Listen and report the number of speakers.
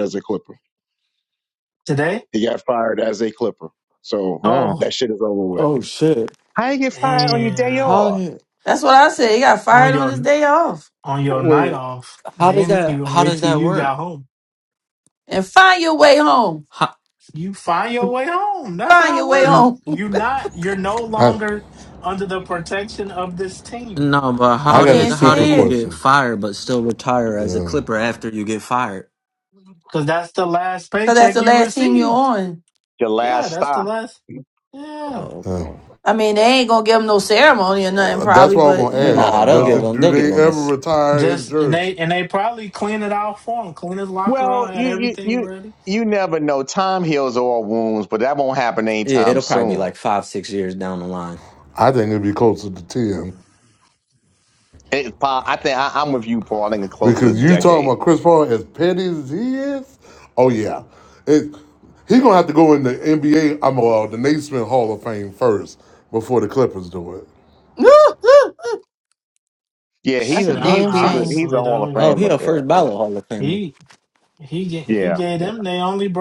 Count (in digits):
6